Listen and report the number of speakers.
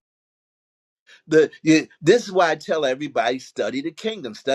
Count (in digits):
1